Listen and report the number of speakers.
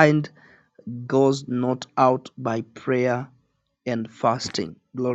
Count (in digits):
1